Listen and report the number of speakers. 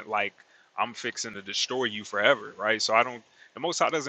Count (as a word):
one